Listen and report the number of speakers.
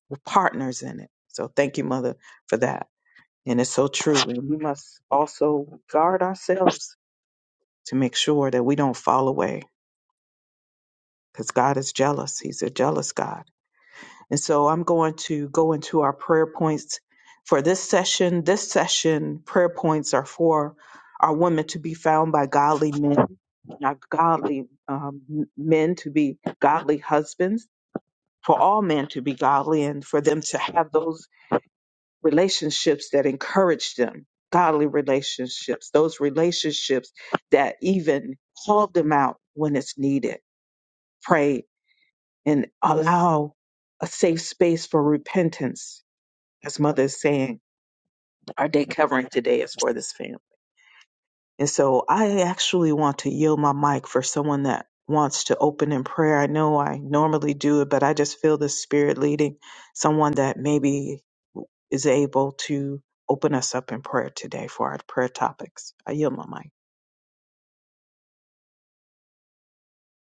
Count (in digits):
1